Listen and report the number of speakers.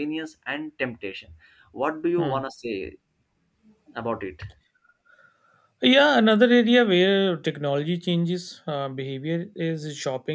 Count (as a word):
two